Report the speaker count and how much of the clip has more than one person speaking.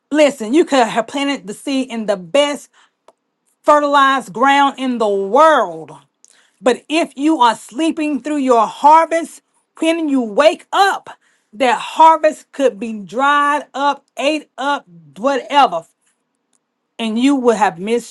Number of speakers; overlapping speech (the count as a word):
one, no overlap